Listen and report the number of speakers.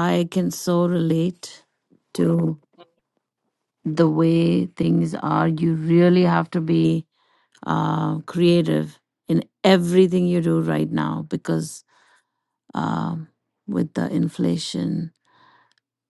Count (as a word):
one